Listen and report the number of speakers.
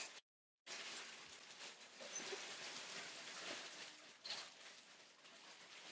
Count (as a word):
zero